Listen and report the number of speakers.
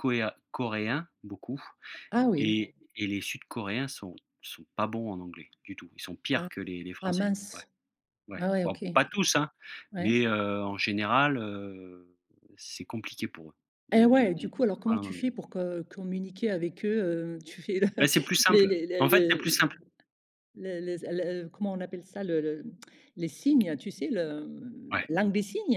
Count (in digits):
2